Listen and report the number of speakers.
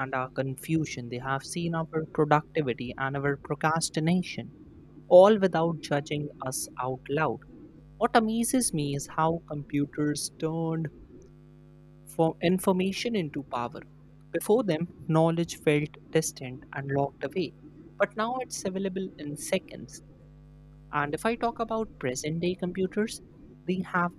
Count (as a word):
one